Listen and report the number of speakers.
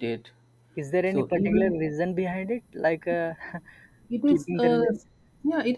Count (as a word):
two